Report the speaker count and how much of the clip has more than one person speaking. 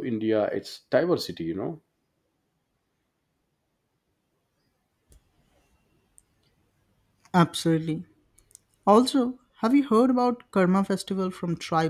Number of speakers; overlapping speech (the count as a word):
two, no overlap